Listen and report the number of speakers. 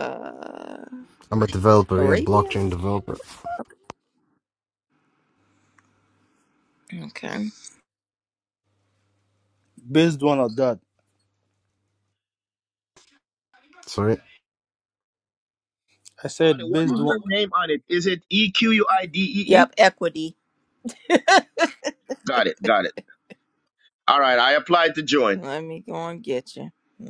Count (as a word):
four